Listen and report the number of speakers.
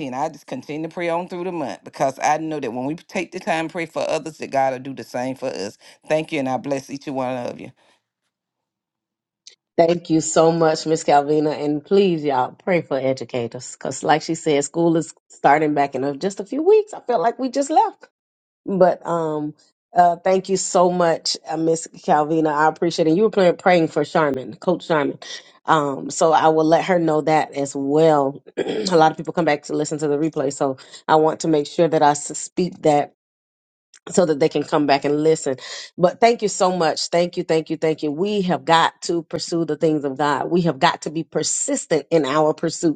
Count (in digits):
2